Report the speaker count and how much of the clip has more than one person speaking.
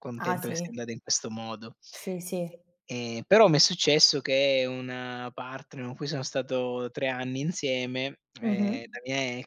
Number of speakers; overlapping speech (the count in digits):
2, about 10%